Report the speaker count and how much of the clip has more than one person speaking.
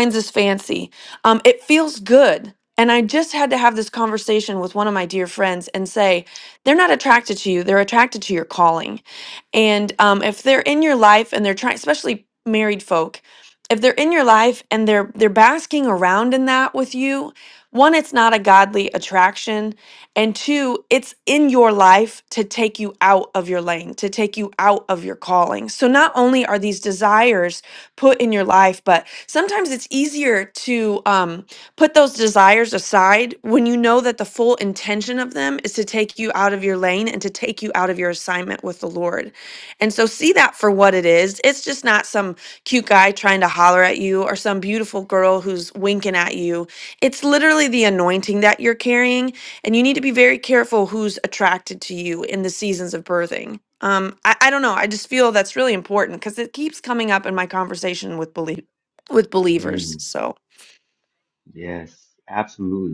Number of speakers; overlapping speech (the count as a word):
two, about 1%